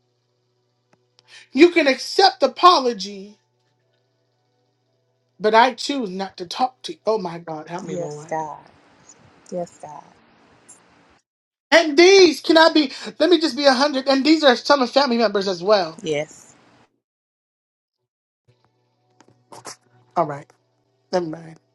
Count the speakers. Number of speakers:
two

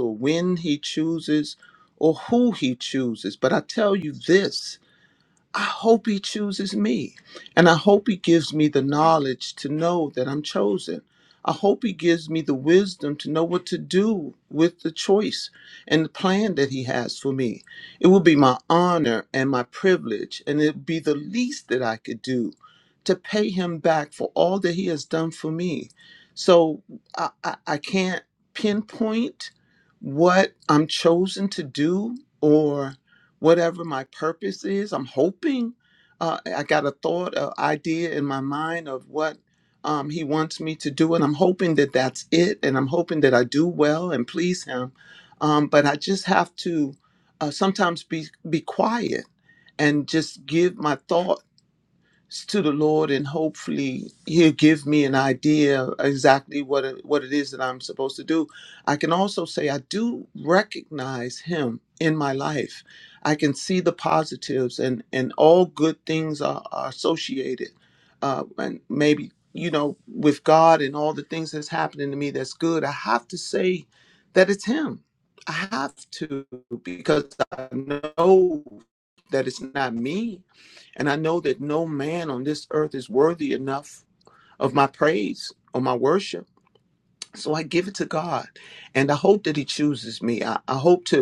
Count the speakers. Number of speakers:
one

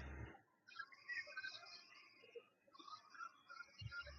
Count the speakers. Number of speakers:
zero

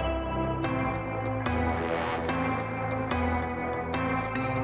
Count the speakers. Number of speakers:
zero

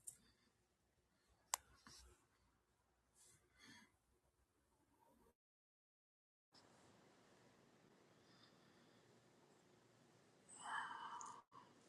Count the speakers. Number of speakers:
zero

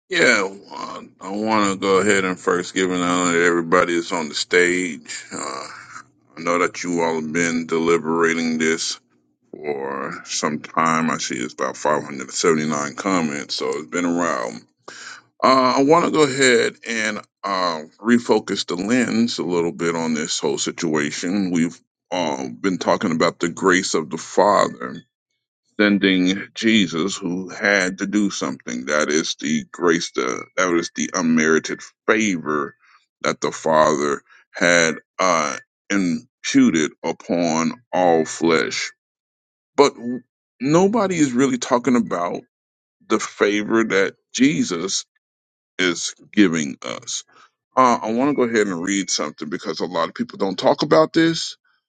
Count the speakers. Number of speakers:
one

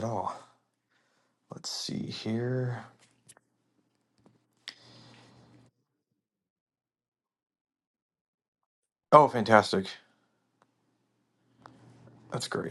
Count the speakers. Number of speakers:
one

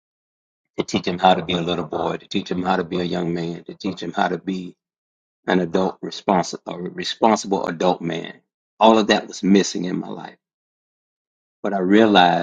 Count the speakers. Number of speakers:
one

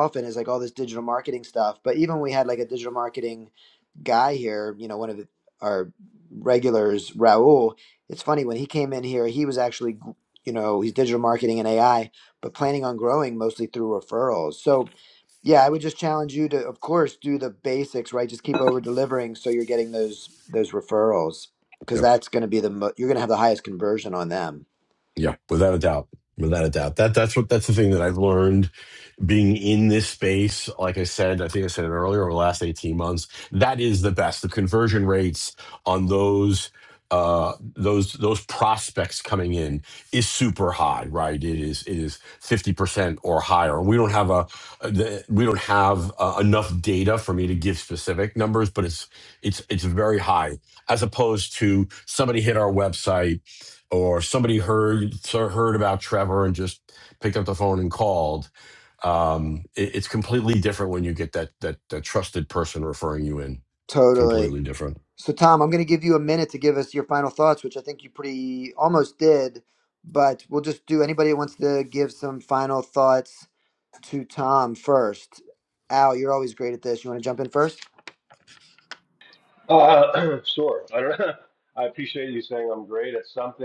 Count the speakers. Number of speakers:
three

